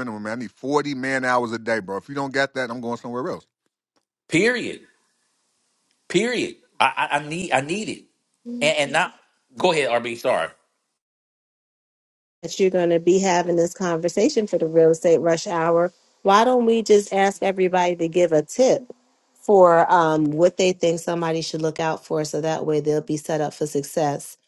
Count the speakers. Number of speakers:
three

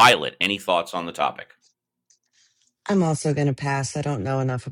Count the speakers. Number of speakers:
two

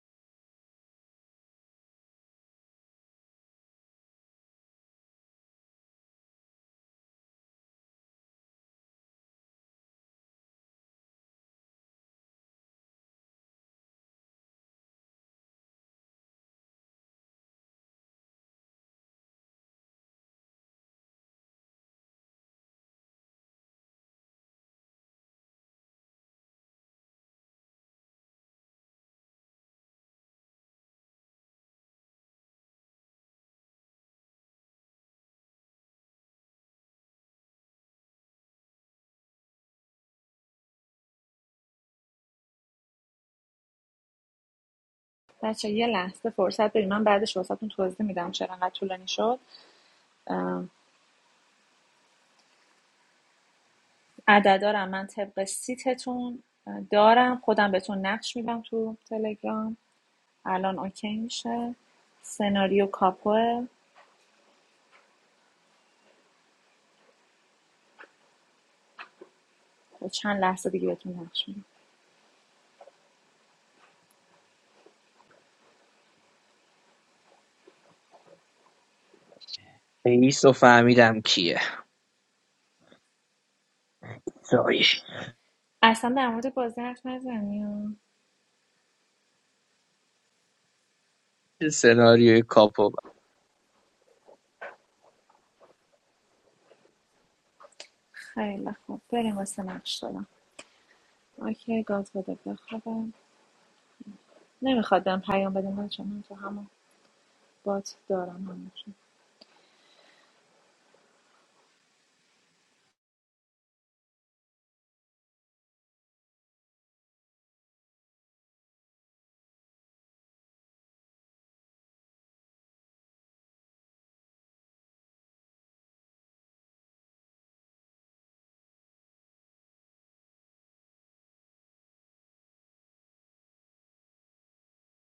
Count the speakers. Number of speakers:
two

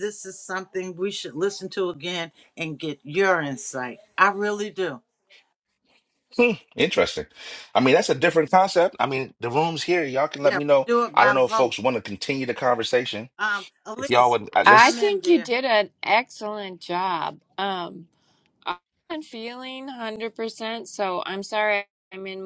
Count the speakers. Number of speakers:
three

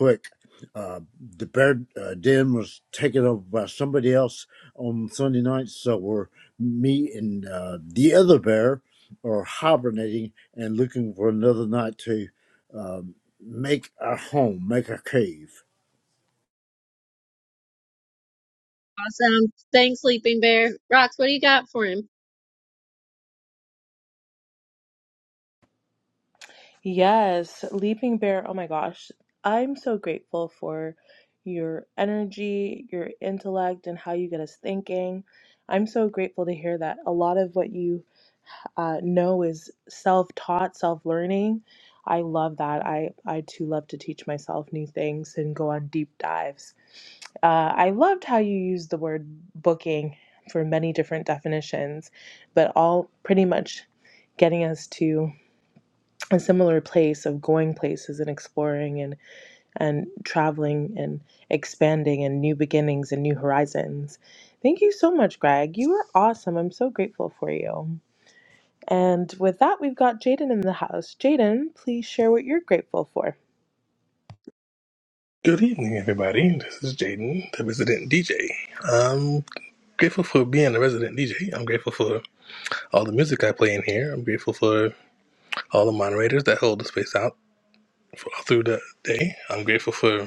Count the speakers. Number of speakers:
four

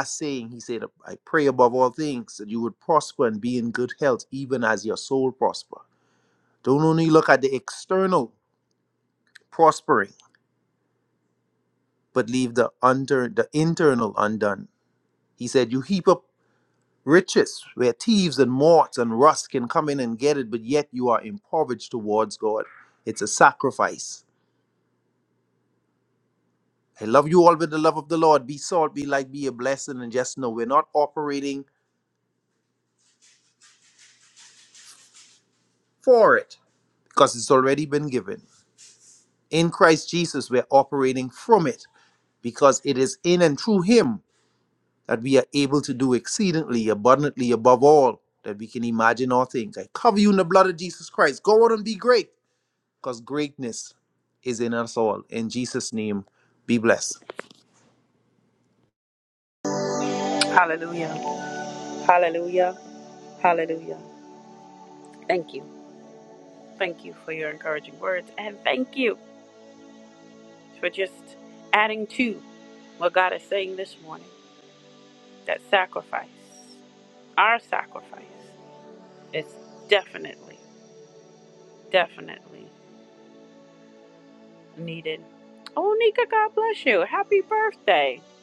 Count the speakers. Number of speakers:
two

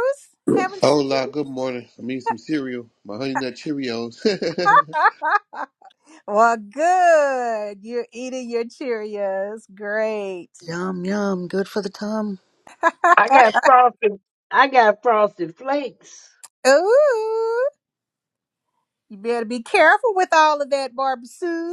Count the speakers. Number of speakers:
four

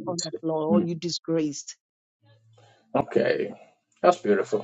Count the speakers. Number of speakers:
two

